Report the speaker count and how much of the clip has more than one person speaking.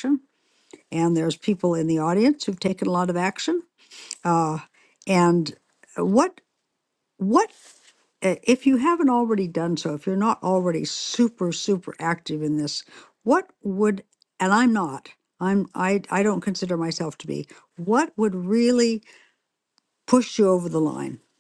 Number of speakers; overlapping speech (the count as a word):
one, no overlap